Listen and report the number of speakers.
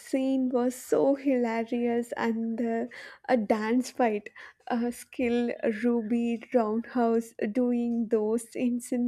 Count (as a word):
one